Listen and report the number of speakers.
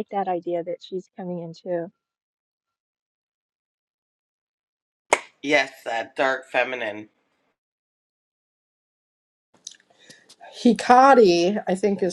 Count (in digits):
3